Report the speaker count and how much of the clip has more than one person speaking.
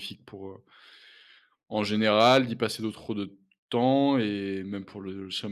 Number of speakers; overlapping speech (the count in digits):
1, no overlap